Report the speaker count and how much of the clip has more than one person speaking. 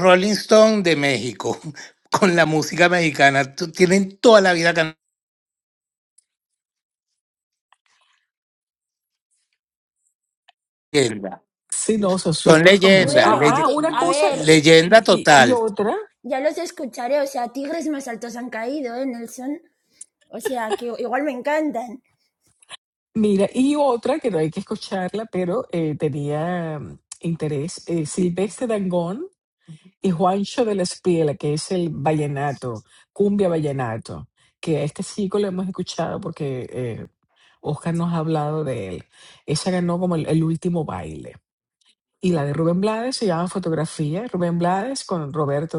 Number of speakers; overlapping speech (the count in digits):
3, about 7%